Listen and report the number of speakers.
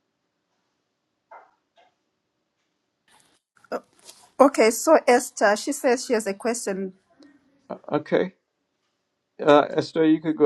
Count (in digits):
2